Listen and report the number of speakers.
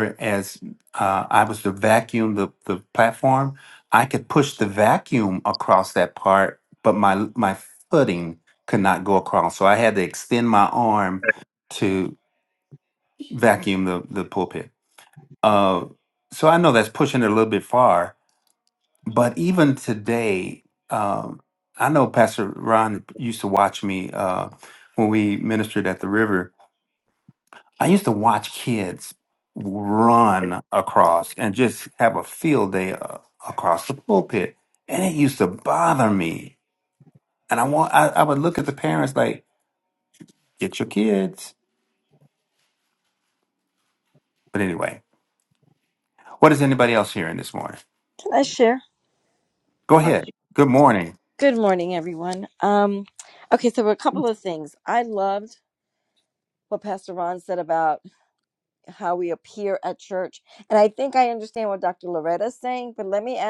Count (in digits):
2